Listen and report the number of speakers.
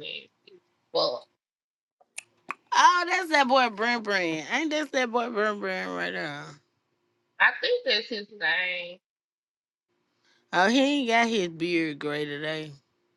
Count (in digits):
2